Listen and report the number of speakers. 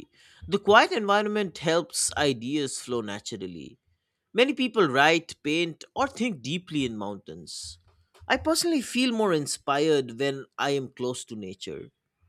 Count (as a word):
one